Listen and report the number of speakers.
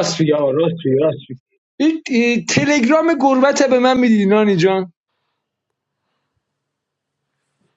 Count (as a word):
one